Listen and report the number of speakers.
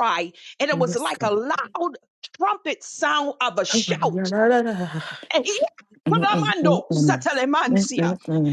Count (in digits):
2